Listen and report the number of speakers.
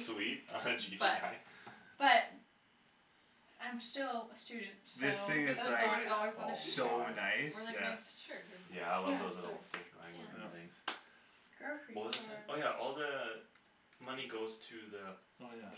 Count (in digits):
4